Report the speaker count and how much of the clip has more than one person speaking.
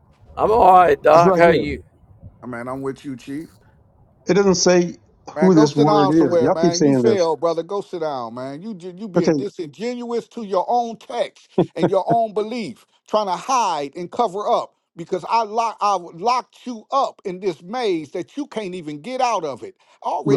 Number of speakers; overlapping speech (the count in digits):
3, about 13%